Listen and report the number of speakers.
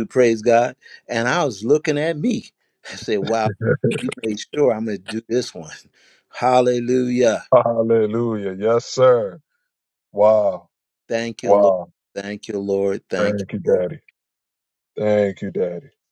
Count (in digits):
2